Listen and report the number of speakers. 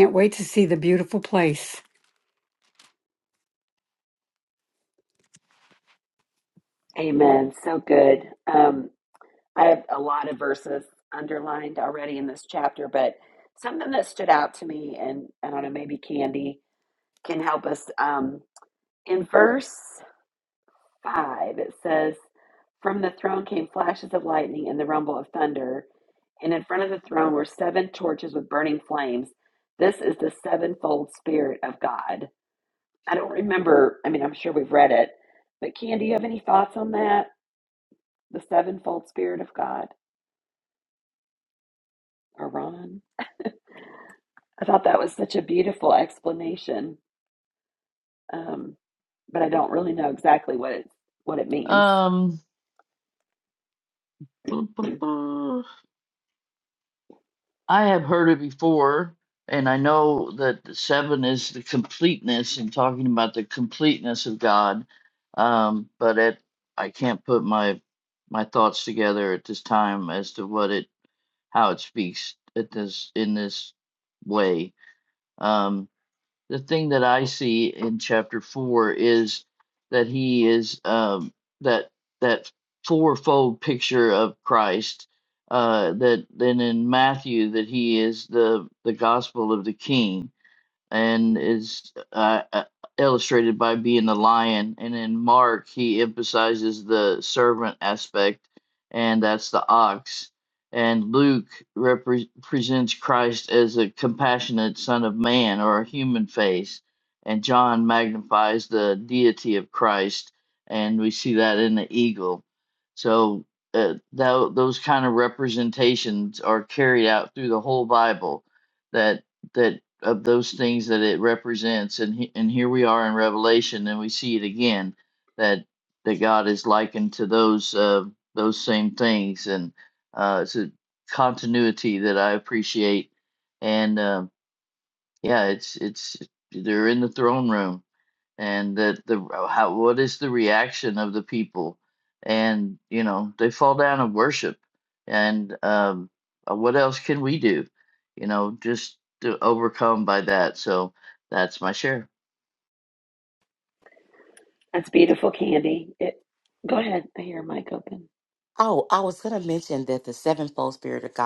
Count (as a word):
four